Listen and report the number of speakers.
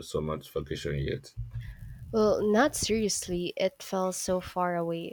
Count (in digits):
2